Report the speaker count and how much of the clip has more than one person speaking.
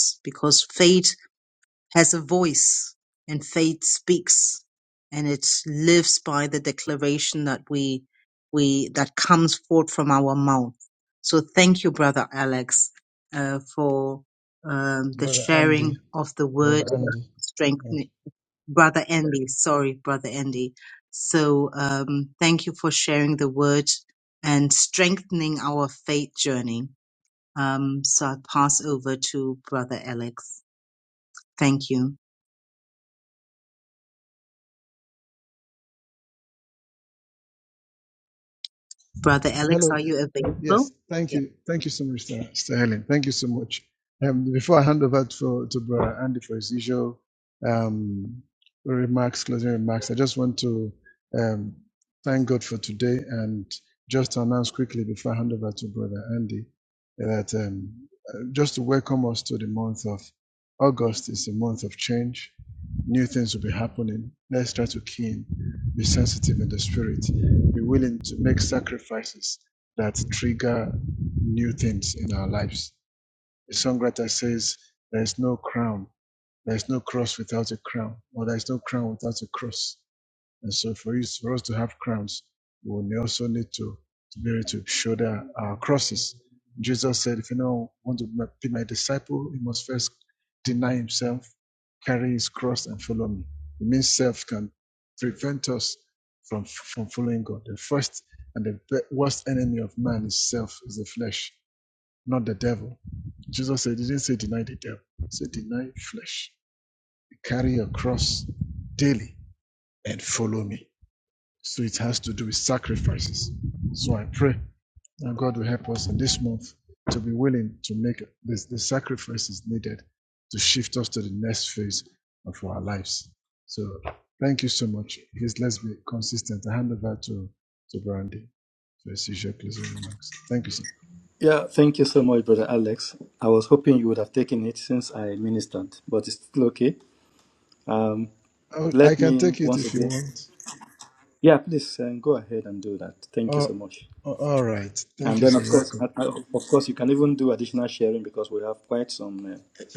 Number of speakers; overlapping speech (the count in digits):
3, about 3%